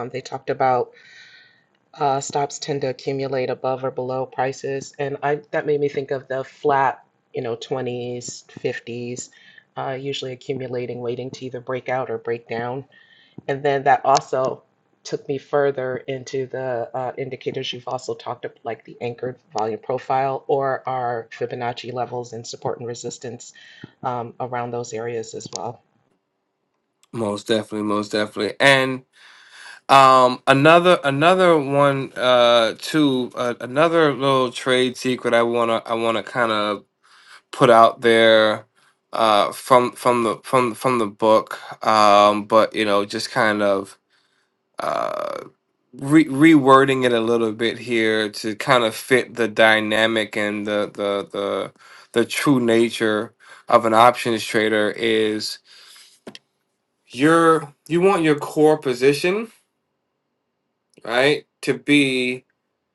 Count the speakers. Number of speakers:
two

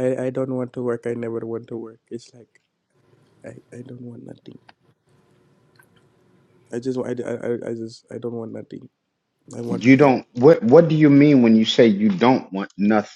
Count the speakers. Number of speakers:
two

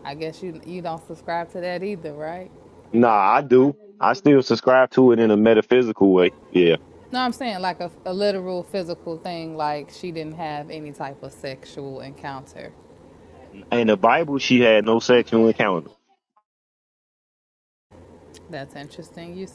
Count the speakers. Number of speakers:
two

